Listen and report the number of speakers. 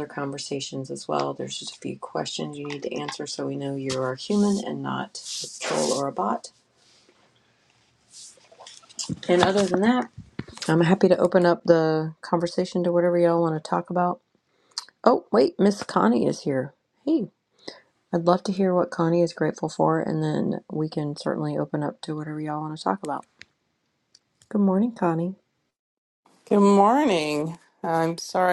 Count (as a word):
two